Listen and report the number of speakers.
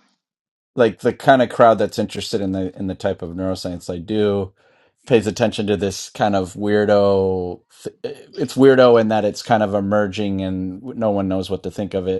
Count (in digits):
1